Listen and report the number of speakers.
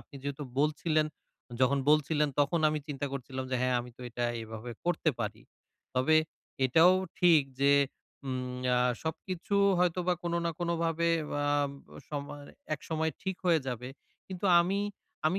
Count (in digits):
1